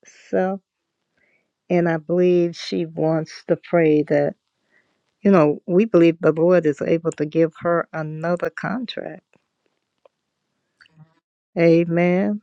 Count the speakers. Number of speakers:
1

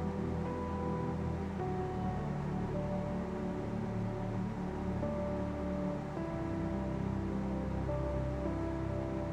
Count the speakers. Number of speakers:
0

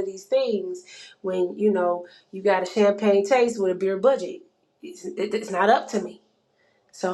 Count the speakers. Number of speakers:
1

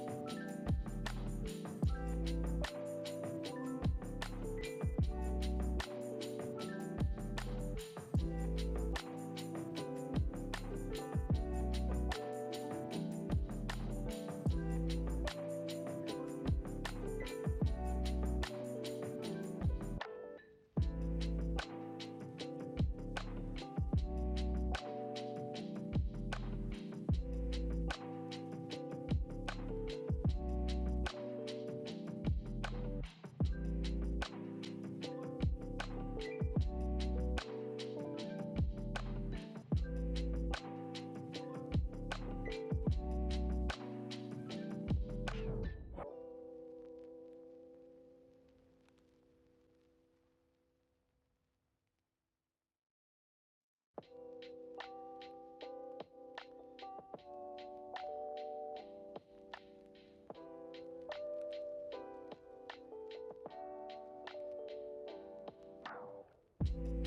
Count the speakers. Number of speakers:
0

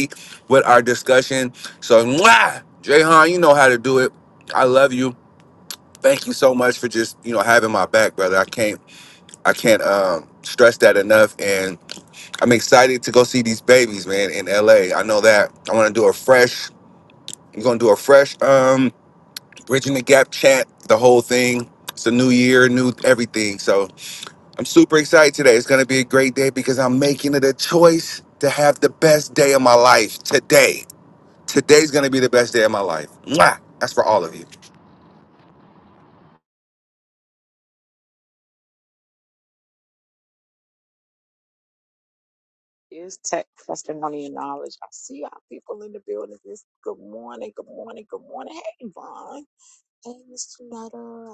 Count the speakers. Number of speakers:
2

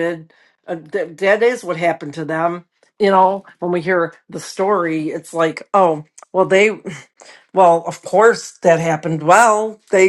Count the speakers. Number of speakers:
1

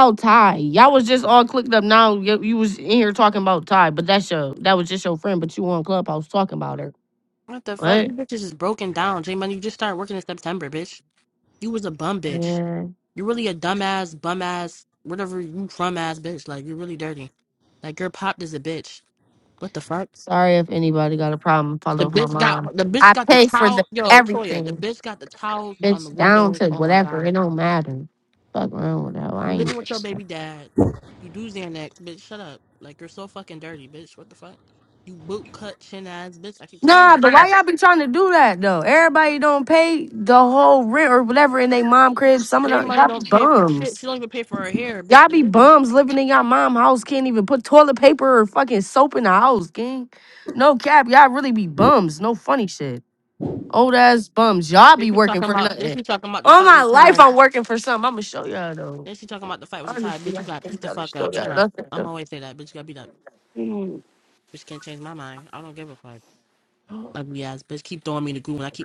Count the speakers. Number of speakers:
2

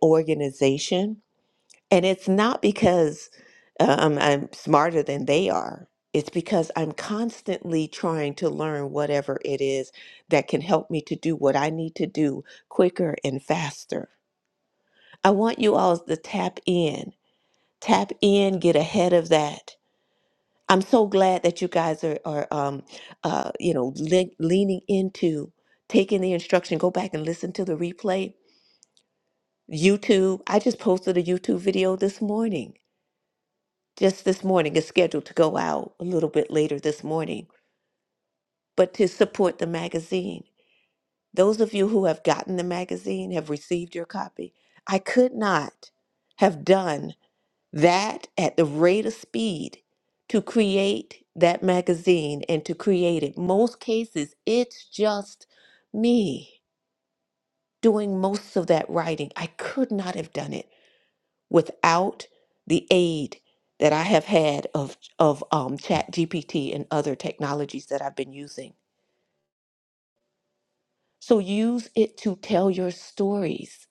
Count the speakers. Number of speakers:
1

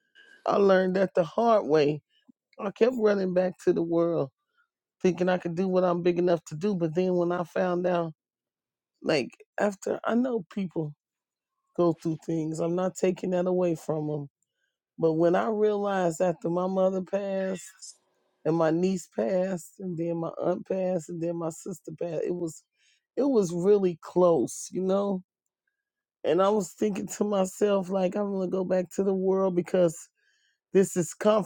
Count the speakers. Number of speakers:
1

